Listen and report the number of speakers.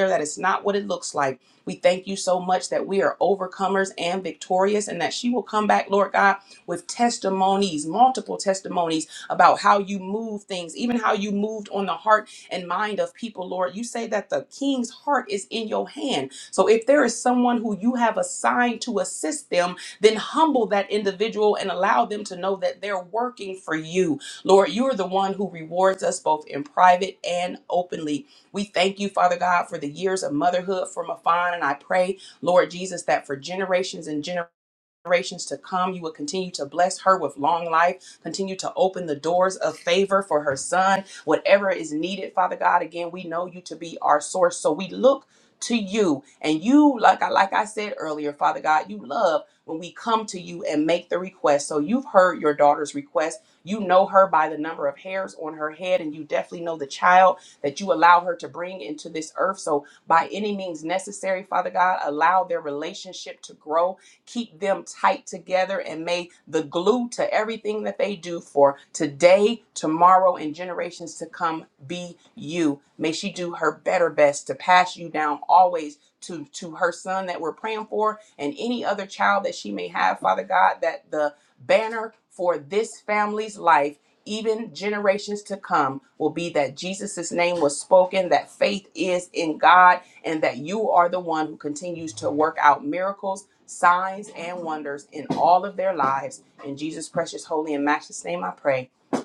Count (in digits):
1